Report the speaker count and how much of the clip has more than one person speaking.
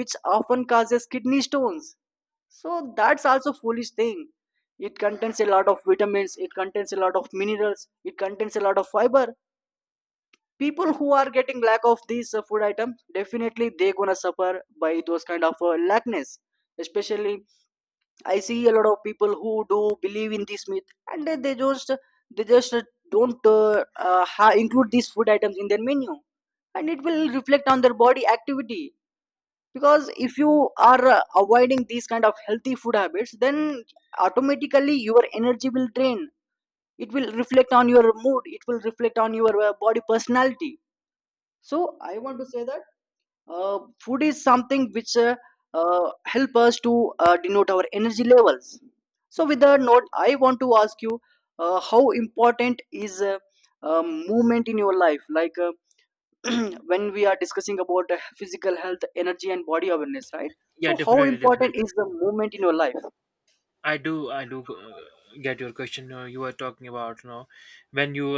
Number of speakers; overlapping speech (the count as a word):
two, about 1%